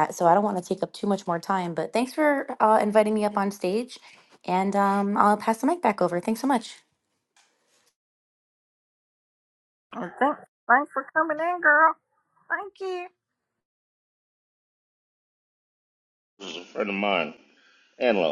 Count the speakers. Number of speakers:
three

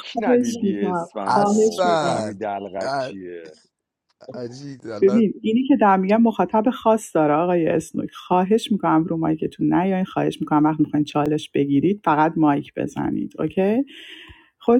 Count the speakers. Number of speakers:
three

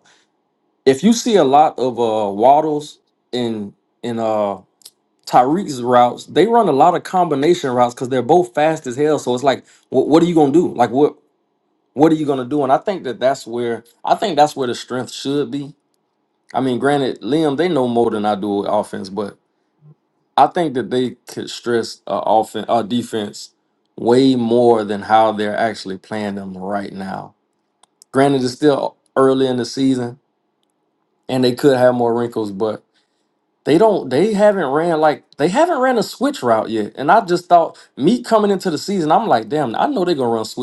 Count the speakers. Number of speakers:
one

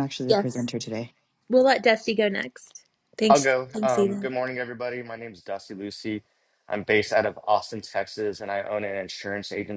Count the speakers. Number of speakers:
three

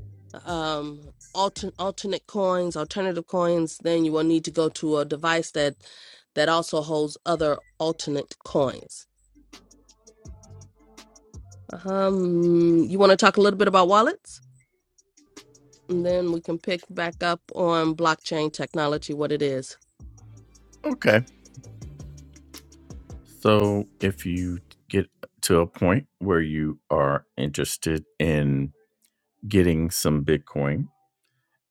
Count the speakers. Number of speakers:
two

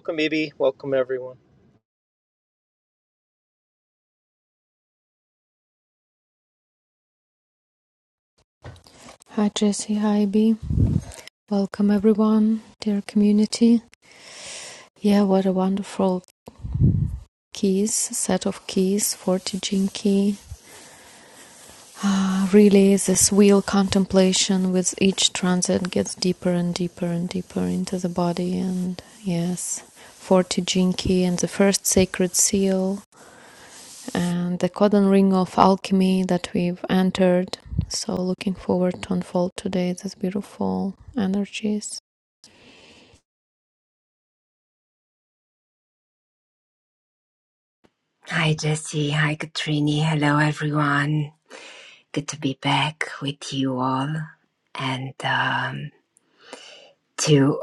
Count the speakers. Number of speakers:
three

